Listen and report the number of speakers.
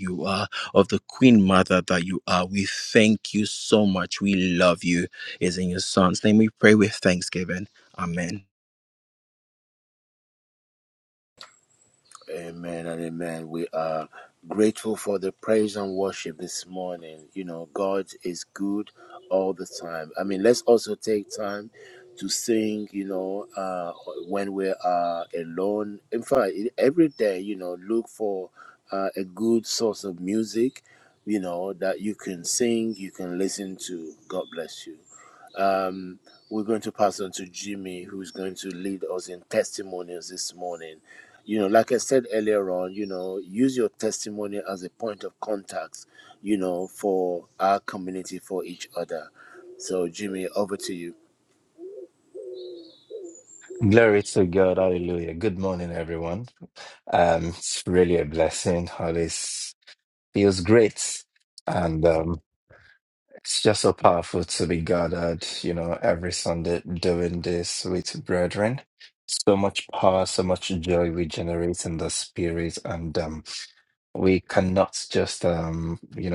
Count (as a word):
three